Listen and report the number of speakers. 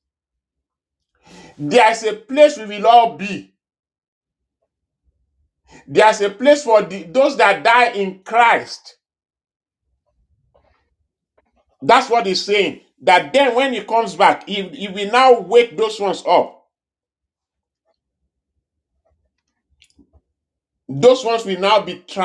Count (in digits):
1